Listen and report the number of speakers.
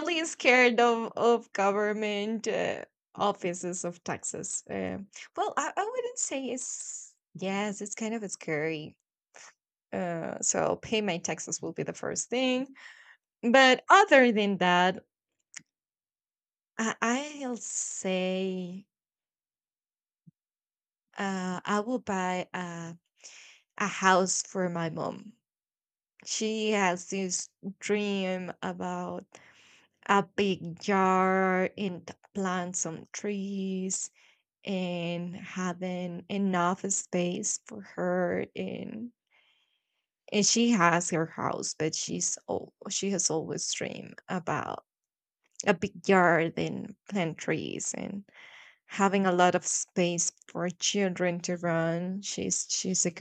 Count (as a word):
one